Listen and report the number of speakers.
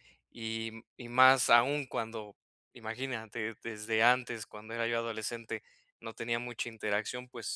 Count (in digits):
1